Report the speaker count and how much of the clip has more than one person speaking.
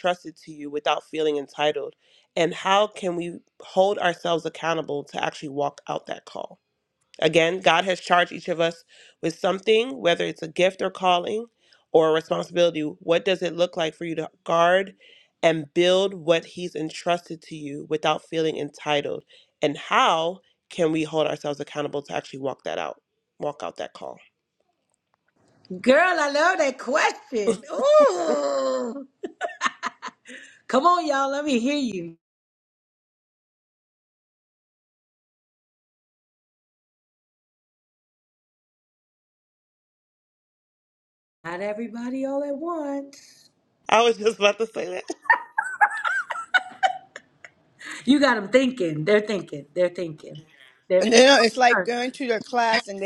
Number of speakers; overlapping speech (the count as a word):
three, about 2%